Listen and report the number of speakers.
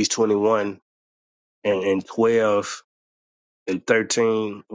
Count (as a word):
one